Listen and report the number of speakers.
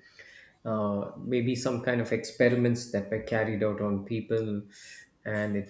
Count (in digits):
1